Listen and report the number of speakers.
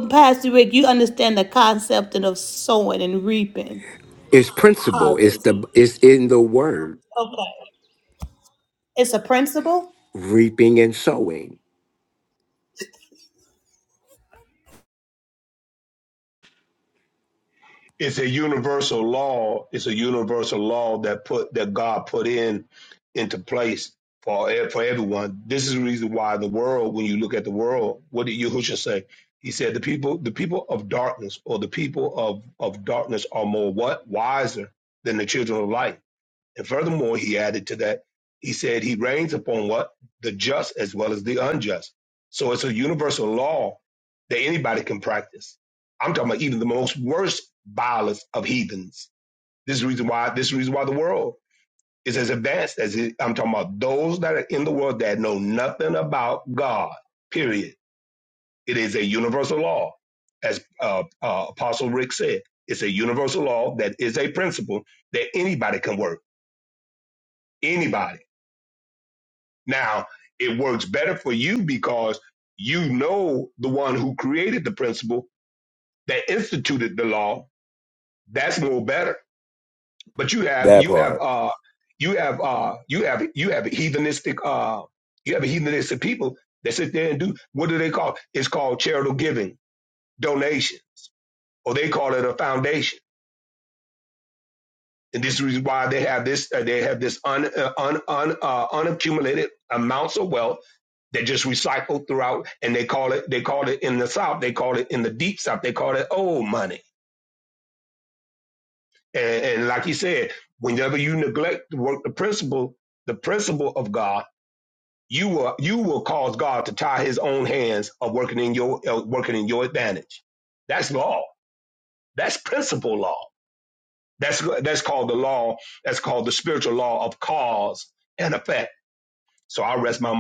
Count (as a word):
three